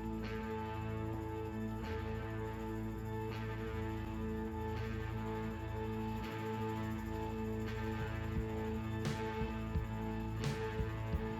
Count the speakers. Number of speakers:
0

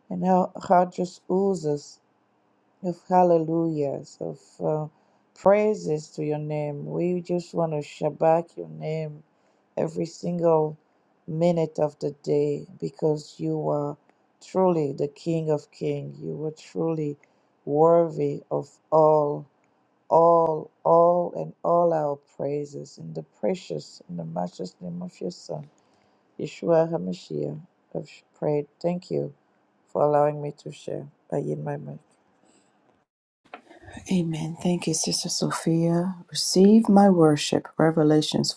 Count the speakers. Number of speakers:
2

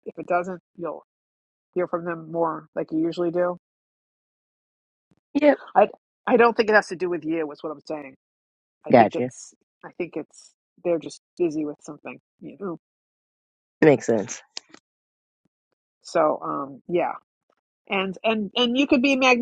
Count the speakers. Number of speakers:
2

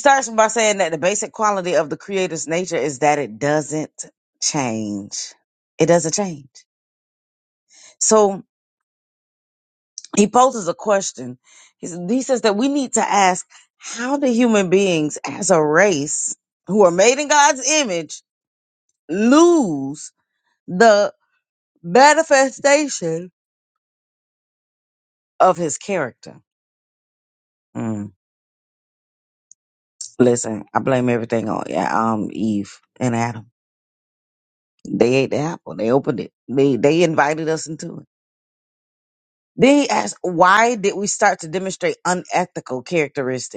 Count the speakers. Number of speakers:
1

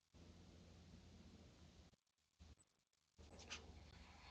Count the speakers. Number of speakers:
0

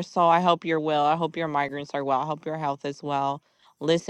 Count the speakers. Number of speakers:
1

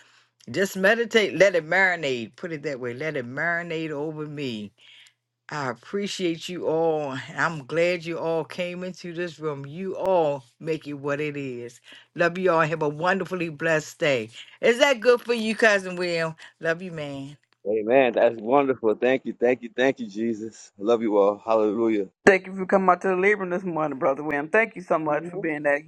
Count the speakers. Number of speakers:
3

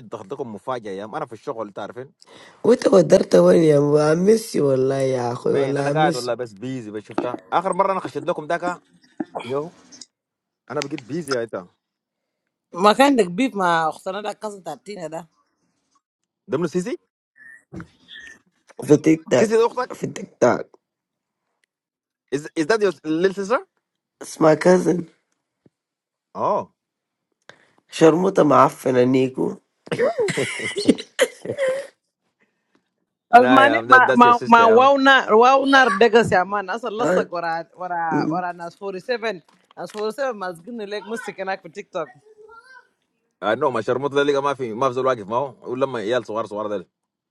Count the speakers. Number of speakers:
3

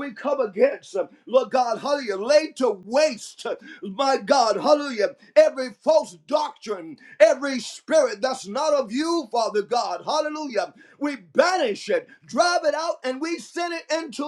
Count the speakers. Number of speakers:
1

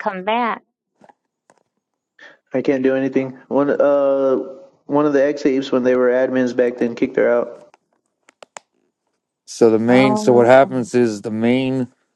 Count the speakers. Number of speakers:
3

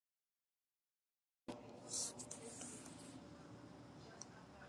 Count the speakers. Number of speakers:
0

